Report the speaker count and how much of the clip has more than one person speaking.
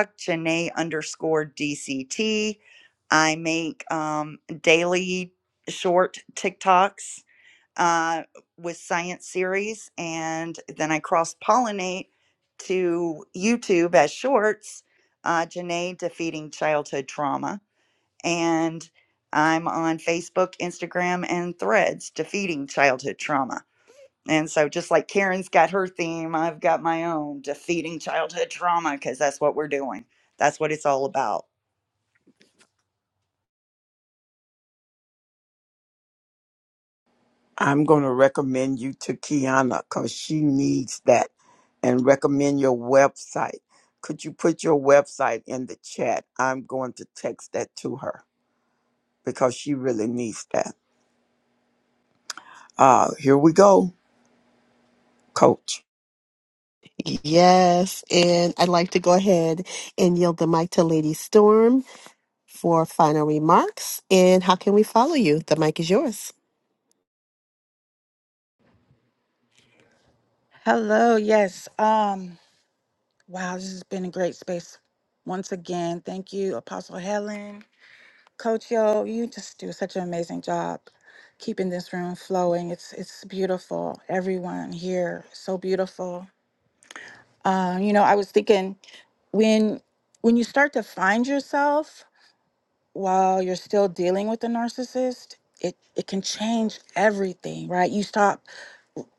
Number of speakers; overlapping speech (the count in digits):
4, no overlap